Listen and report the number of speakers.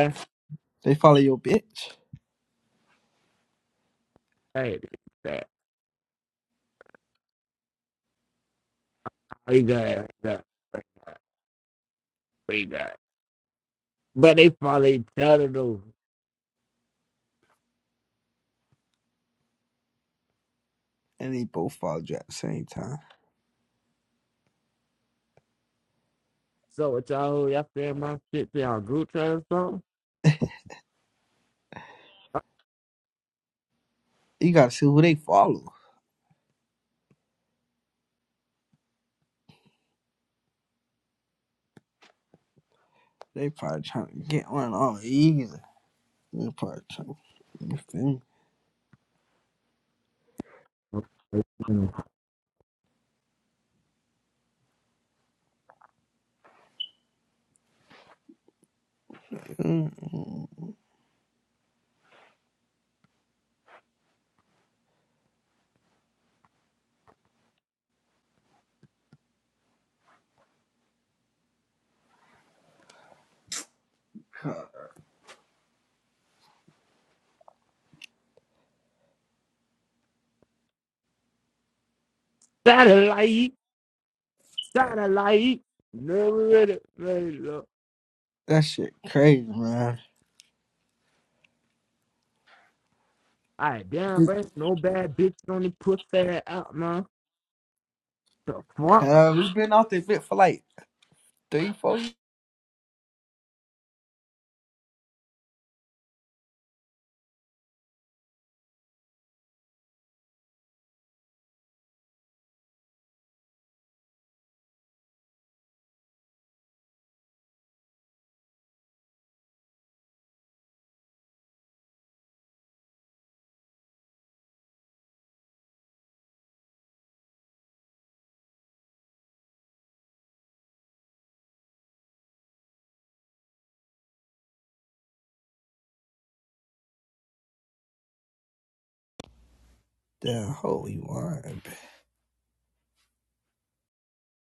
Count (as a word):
two